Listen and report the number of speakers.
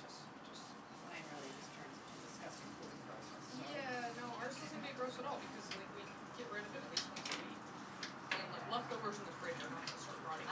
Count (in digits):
2